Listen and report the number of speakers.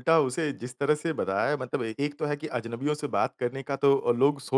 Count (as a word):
one